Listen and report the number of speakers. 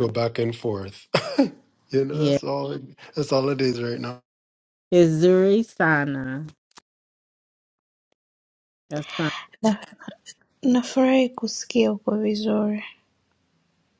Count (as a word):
three